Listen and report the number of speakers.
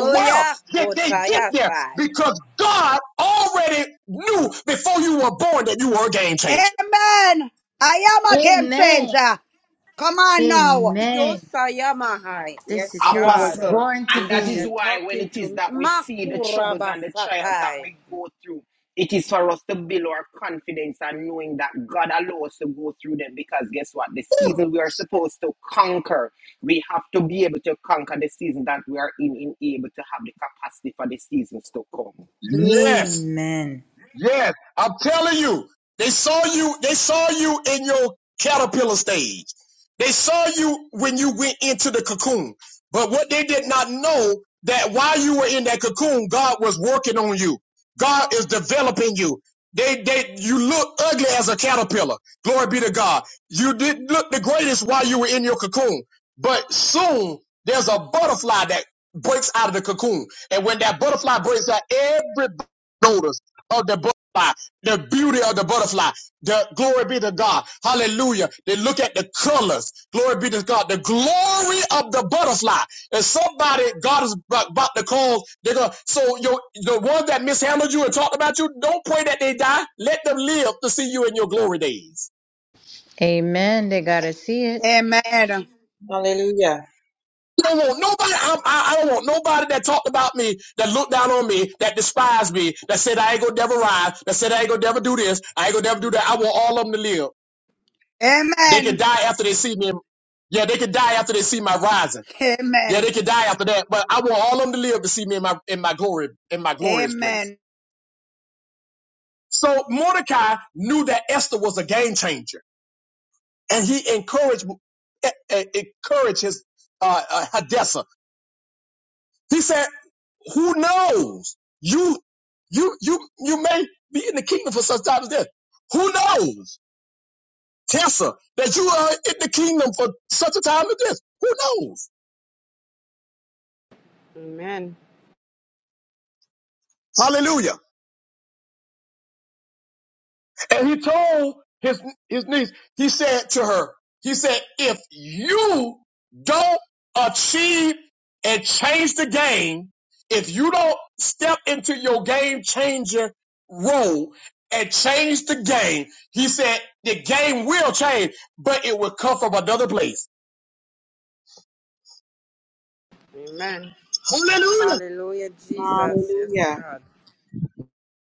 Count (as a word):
six